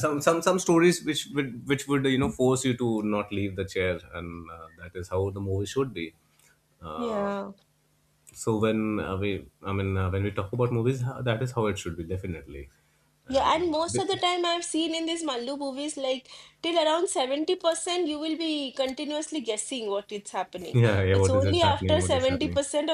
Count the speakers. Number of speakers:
two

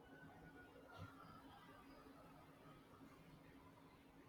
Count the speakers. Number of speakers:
zero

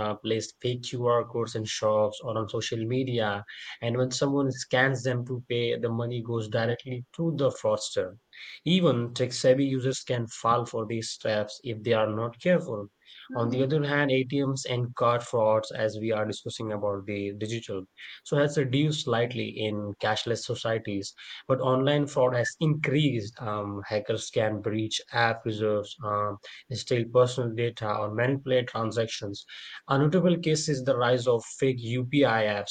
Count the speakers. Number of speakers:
one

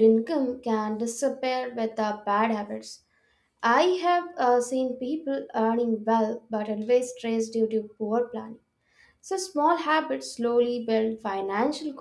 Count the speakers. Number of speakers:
one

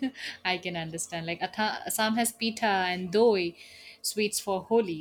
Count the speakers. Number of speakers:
one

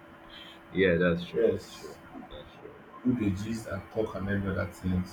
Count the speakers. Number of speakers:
two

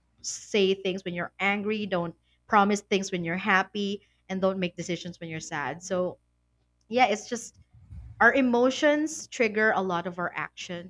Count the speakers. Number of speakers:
one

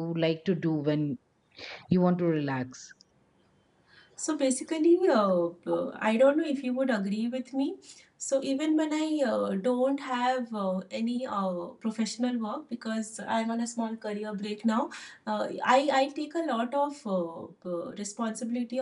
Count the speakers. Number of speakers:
two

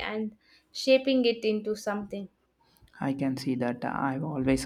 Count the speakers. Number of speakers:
two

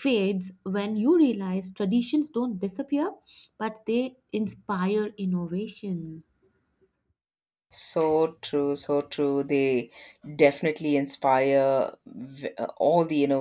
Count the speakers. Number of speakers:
two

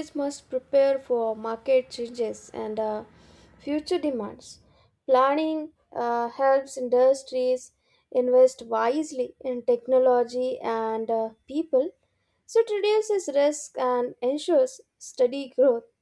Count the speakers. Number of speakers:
one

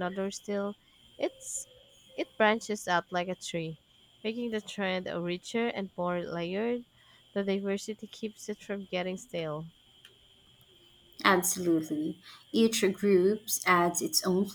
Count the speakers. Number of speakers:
two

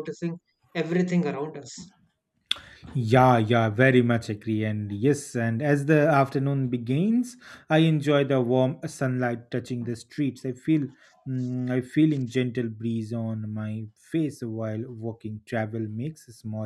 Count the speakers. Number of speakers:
two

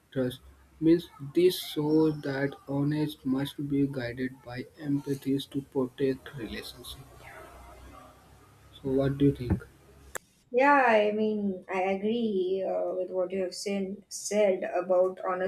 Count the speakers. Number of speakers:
two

